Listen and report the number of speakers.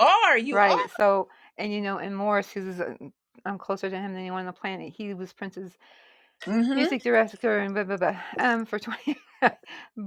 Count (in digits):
2